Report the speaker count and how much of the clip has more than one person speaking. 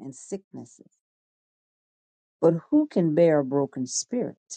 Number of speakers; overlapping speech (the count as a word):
one, no overlap